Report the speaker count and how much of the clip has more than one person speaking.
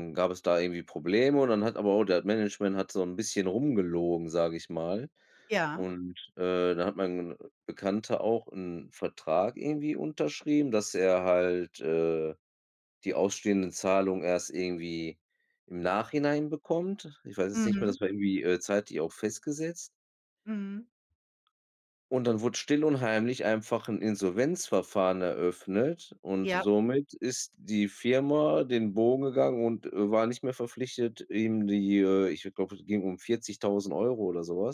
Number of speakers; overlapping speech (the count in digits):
2, about 2%